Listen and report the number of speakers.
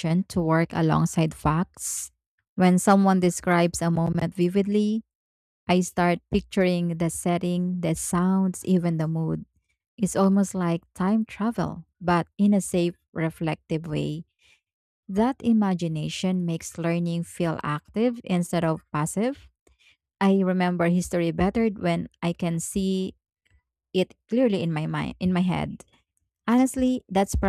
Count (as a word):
one